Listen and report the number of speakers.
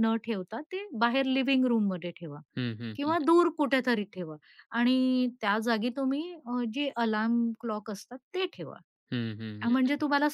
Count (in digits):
2